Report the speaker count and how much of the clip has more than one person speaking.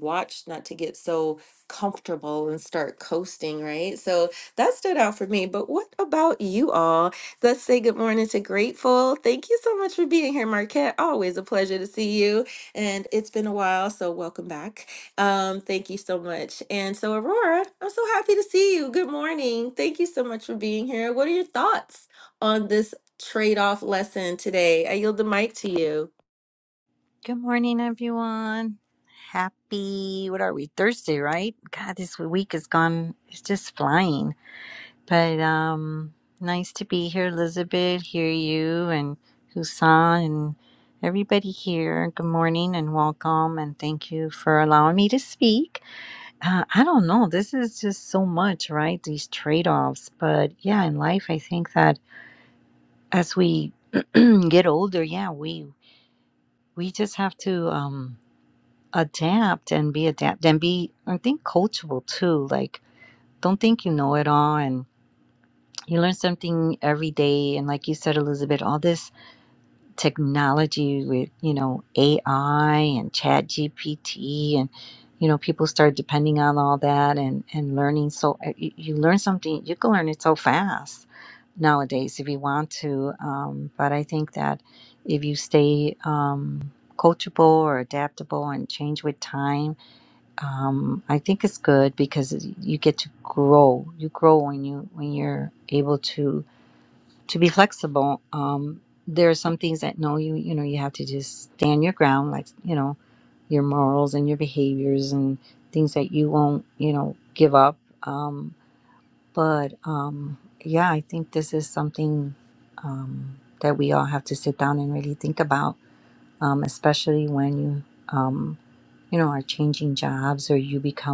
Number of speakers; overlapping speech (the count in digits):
2, no overlap